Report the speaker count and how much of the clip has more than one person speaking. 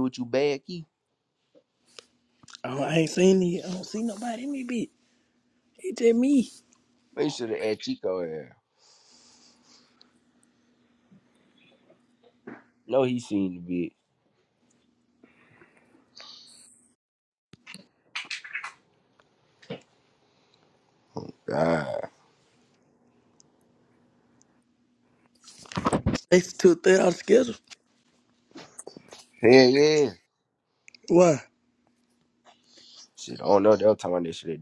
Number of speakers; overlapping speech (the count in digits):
2, no overlap